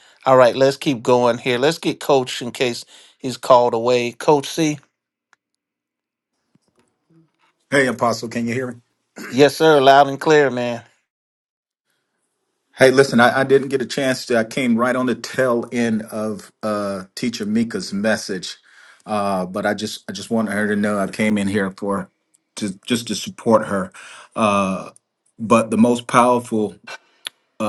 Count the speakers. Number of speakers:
two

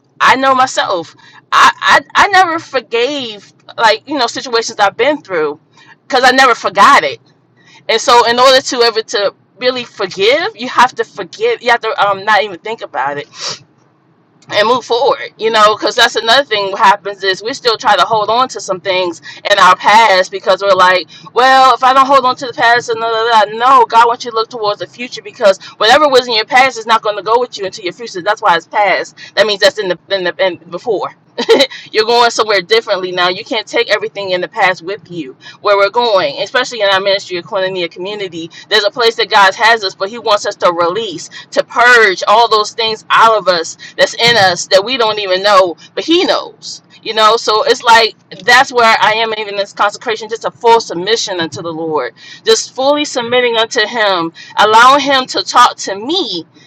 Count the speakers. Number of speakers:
one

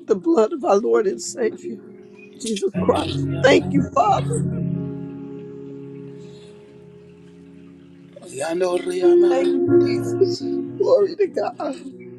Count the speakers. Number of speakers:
two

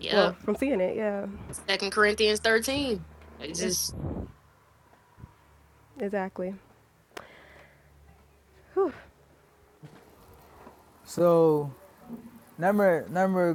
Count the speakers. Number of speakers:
three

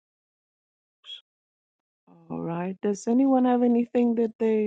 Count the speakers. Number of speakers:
one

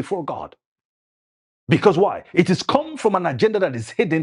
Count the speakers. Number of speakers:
one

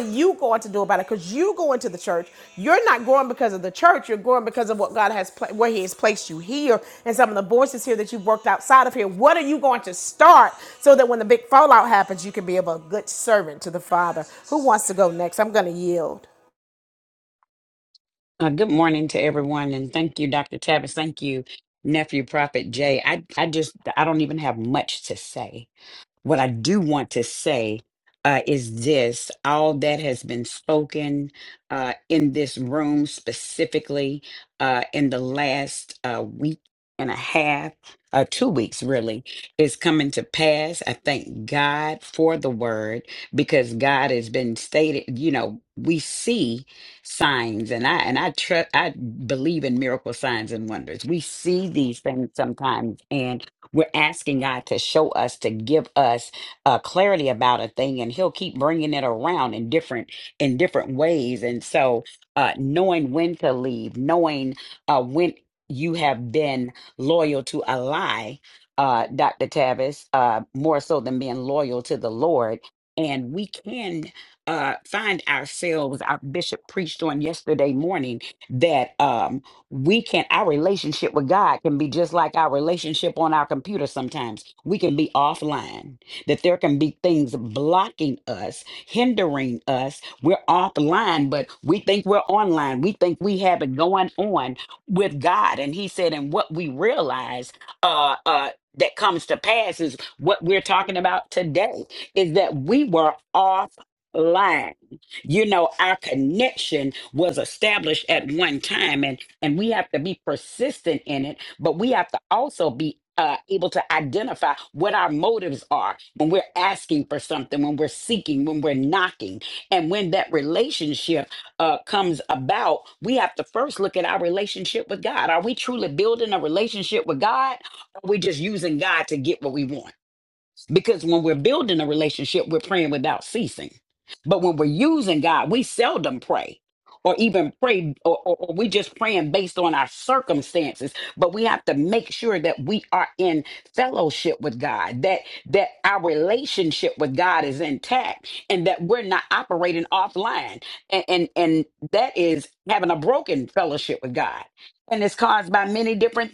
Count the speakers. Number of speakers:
two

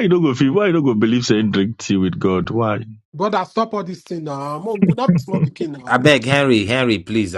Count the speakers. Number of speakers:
three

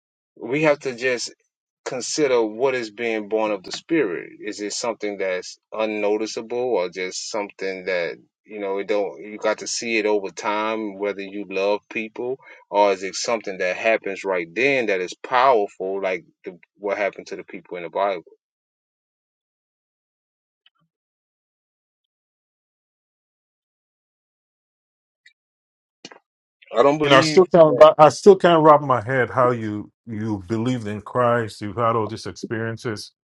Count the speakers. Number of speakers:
two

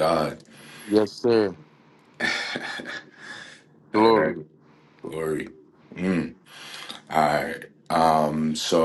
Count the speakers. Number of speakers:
two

